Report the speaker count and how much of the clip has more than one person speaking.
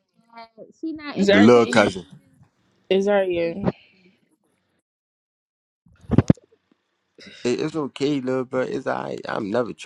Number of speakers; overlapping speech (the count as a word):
three, about 8%